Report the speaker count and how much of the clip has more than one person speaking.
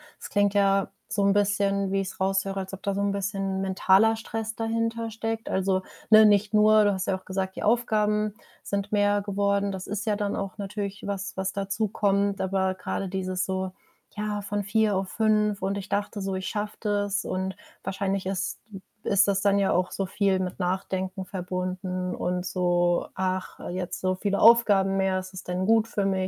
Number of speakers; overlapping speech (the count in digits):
1, no overlap